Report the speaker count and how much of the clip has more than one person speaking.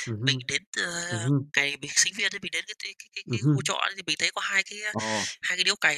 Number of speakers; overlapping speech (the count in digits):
2, about 15%